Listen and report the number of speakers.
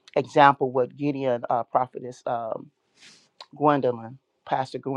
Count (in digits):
1